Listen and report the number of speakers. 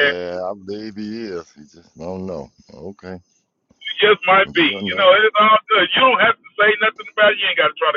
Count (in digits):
2